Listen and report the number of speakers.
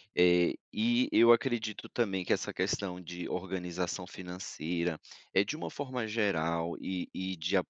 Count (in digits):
1